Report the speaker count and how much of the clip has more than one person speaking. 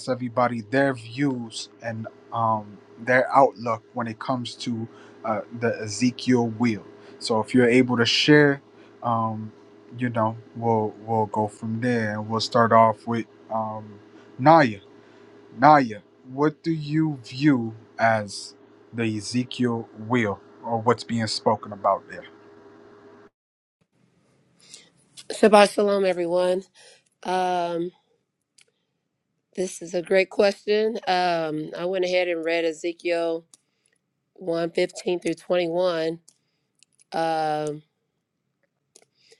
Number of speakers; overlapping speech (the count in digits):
2, no overlap